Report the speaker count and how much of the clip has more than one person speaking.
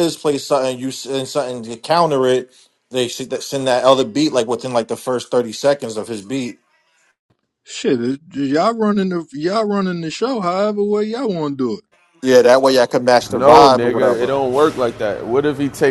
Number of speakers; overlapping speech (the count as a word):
three, about 7%